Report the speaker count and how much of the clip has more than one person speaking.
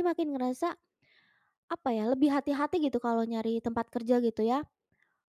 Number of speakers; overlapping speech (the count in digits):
1, no overlap